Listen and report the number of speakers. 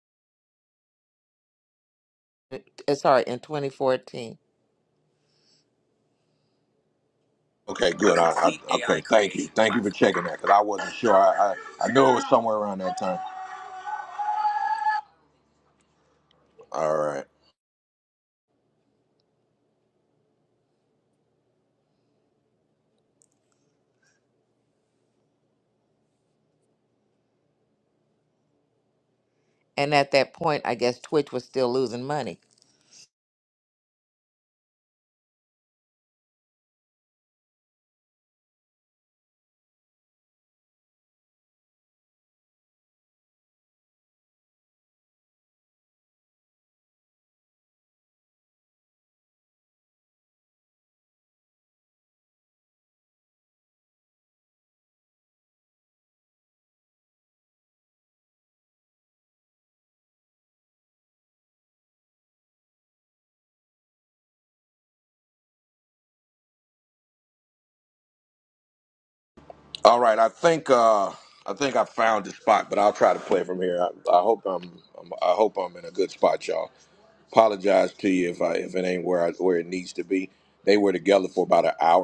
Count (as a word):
two